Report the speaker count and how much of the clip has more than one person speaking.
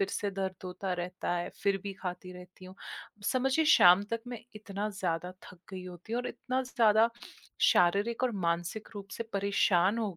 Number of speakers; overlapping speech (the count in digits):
1, no overlap